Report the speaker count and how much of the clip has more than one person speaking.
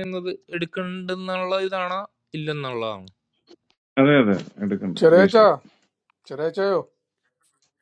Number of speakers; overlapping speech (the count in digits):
3, about 6%